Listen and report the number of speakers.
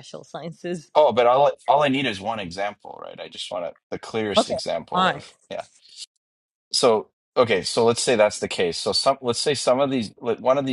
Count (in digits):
2